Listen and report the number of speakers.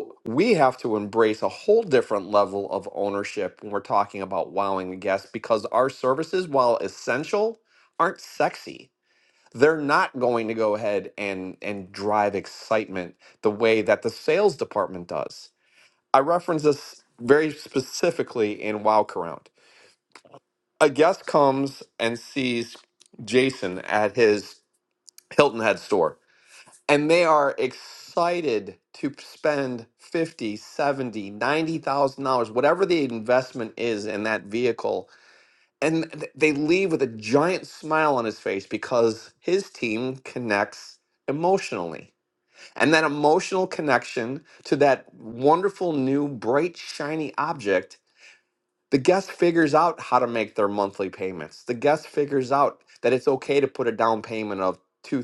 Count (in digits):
1